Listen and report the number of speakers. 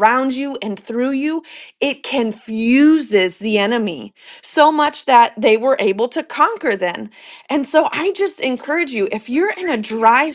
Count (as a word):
one